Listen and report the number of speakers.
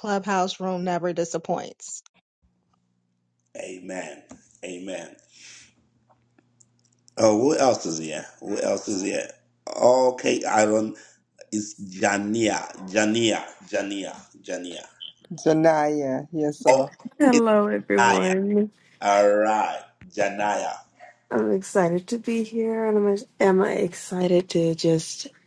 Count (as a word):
four